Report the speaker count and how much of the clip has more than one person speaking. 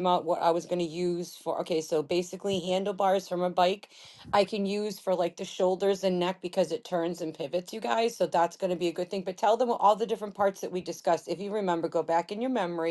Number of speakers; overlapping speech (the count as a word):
one, no overlap